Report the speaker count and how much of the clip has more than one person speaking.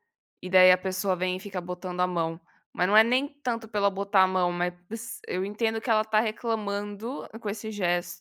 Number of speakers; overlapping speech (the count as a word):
one, no overlap